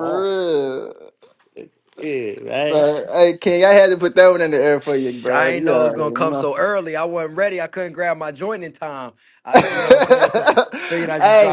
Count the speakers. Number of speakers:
3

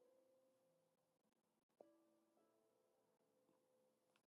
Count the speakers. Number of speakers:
0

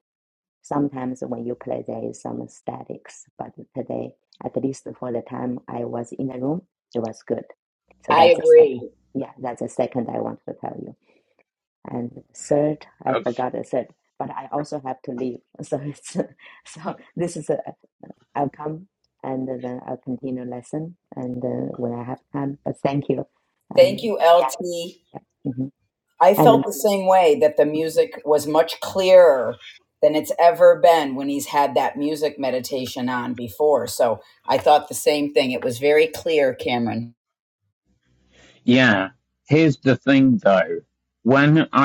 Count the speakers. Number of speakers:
3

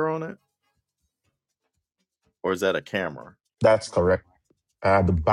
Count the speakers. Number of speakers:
2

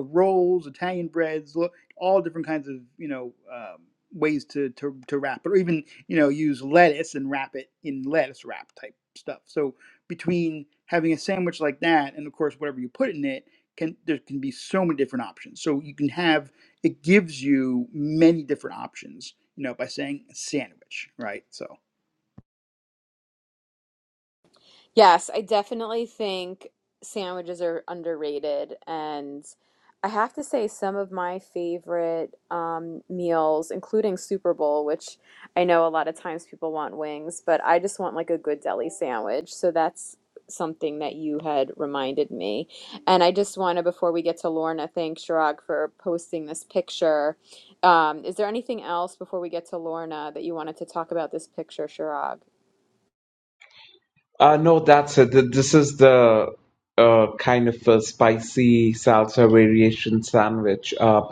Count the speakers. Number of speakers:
3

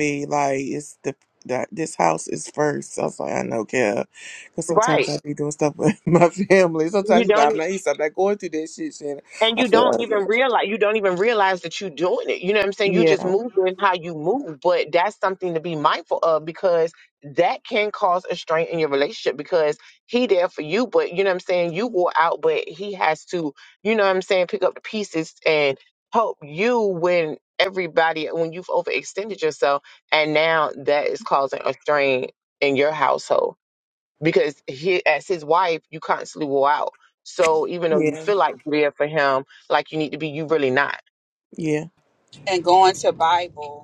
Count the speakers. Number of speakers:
3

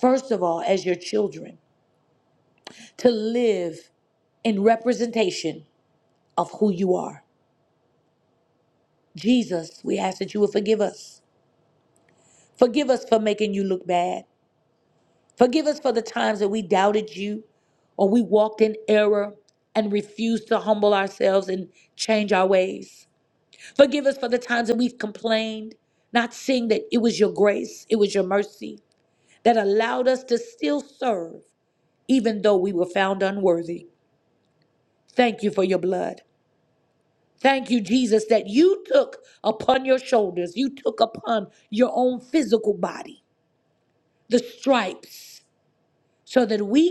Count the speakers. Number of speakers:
1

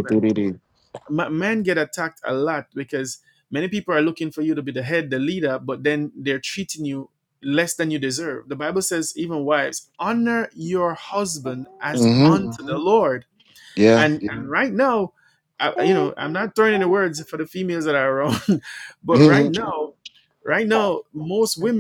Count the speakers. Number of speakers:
2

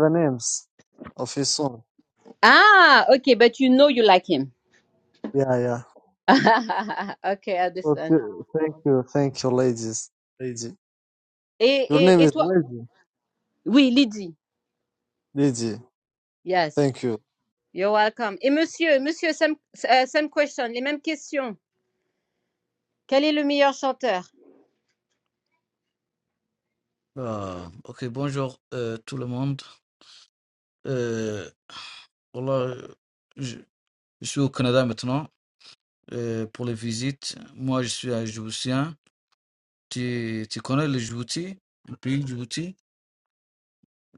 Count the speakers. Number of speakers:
3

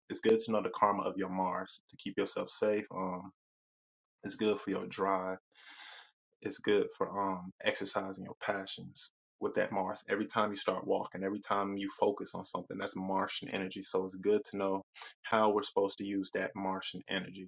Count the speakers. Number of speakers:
1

